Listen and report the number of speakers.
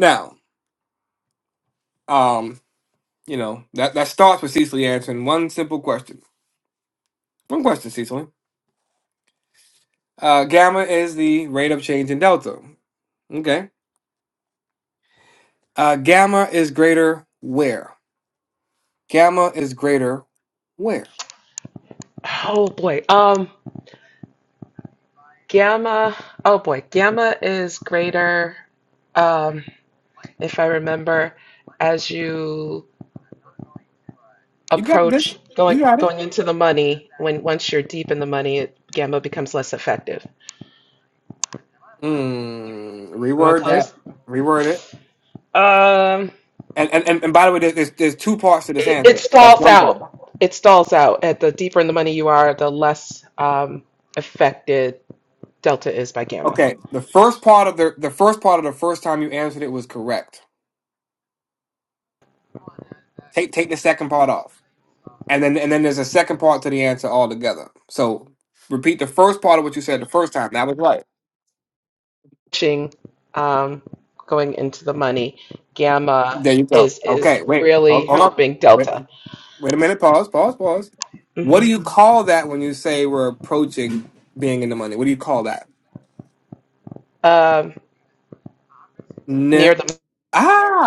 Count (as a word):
two